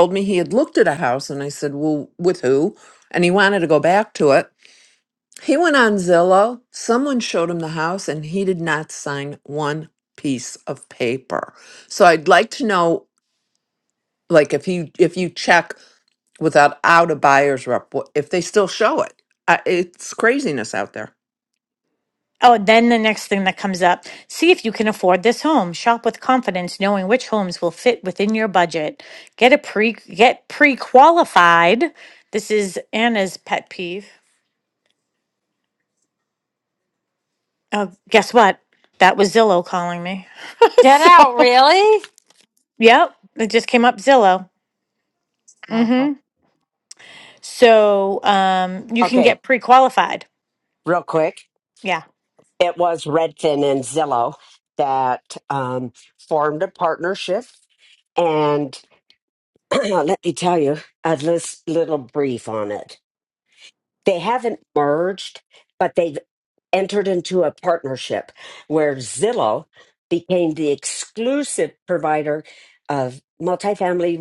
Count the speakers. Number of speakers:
four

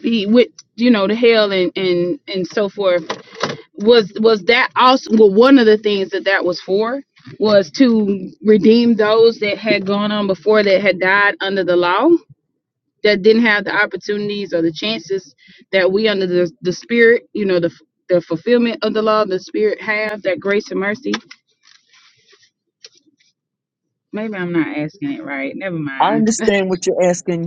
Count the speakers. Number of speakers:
two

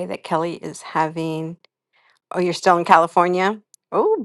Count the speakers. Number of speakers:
one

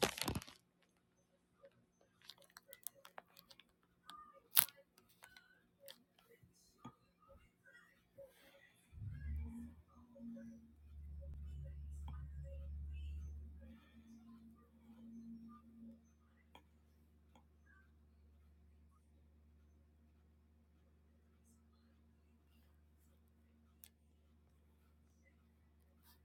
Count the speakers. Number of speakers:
zero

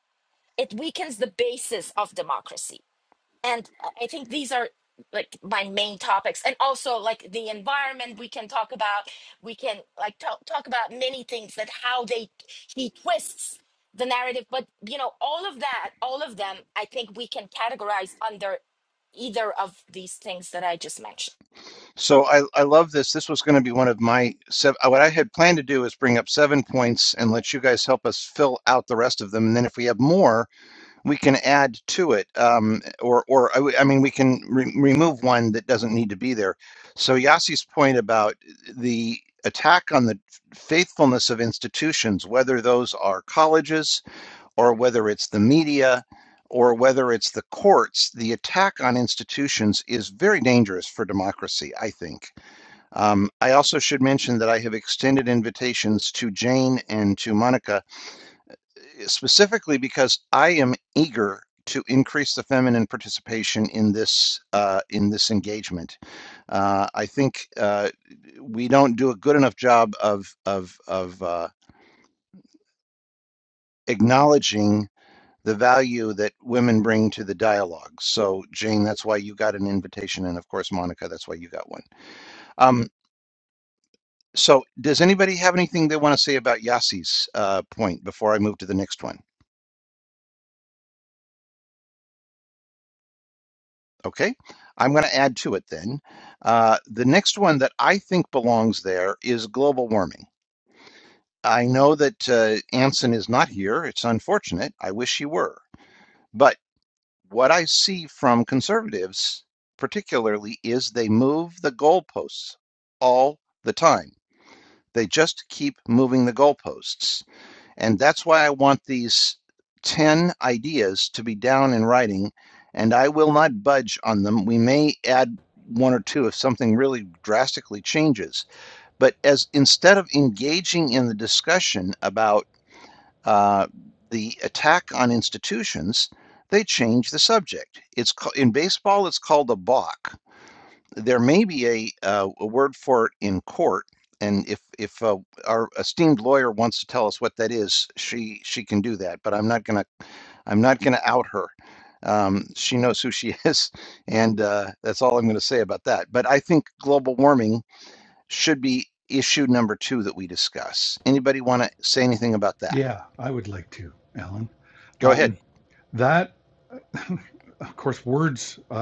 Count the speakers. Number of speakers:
three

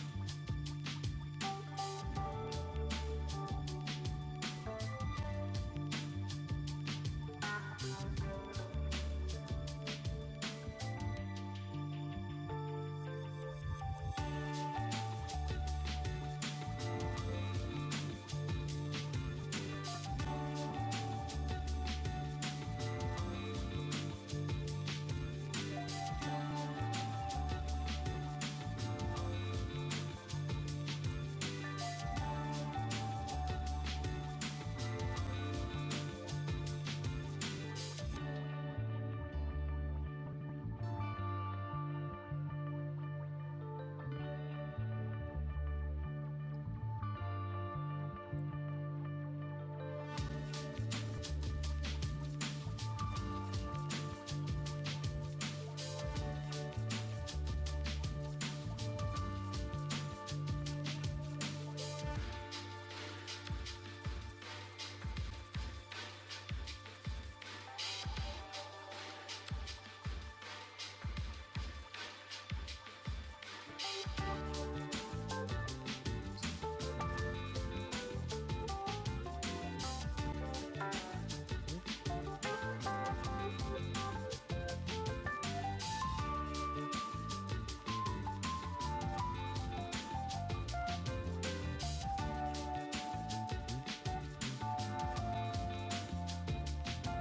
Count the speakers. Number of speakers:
zero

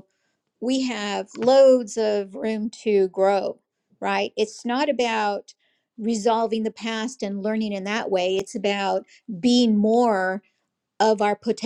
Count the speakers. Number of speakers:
one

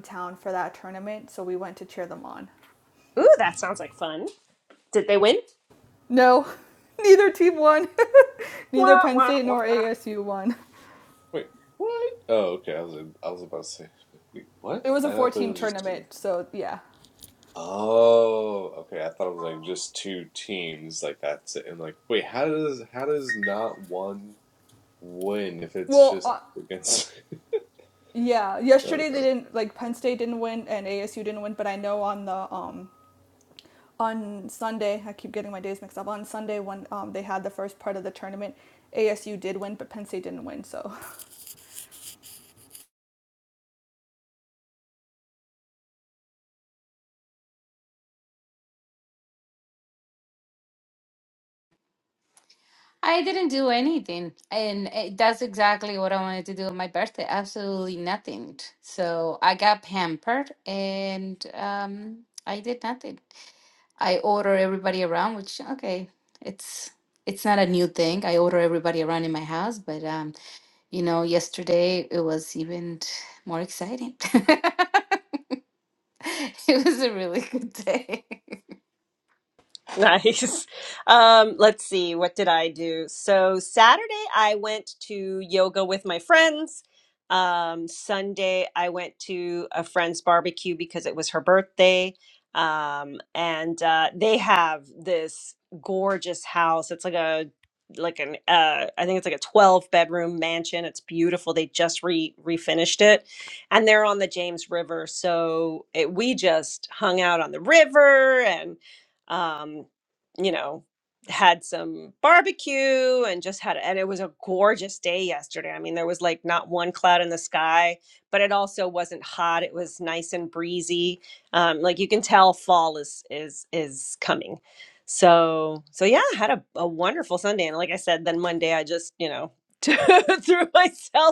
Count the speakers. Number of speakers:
four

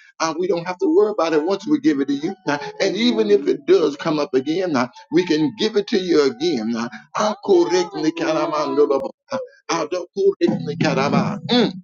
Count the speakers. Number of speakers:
one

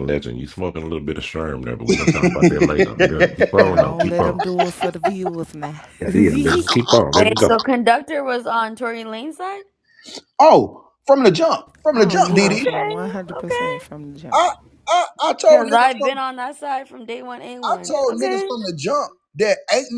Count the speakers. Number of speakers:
four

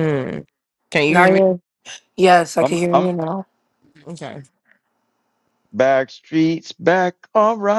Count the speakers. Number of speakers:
three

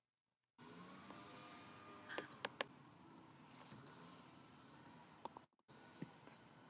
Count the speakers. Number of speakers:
zero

